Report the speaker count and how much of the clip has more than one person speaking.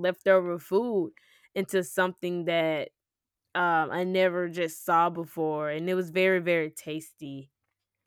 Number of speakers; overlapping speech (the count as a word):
one, no overlap